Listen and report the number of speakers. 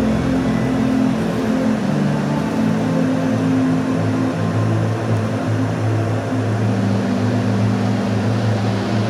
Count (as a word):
zero